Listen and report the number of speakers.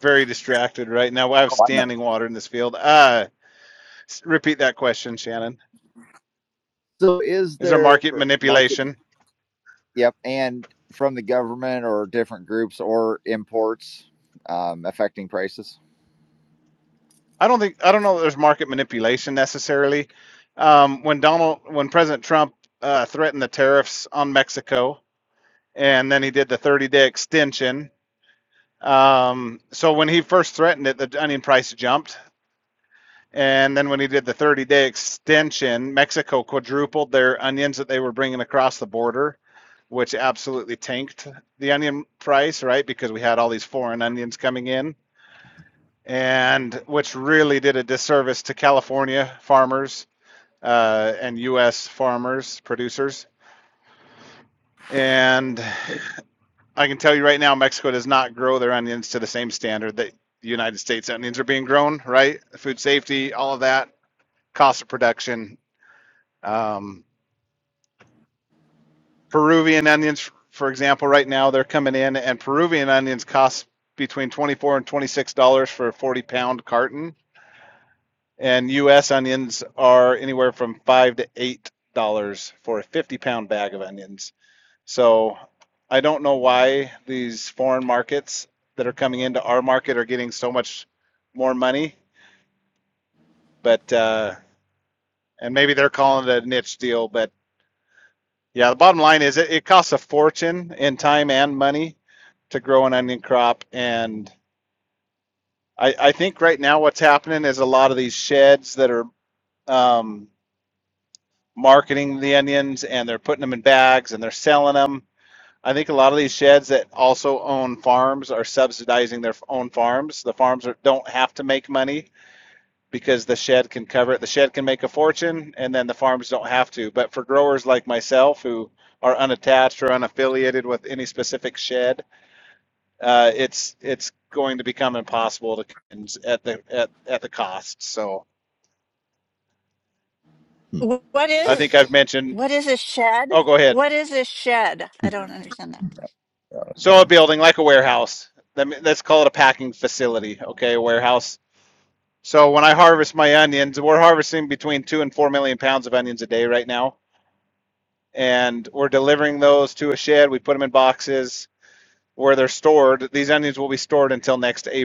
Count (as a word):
three